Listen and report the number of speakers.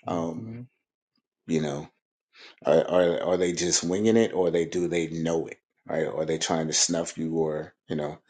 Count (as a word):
one